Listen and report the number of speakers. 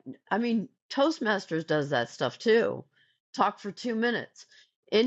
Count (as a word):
one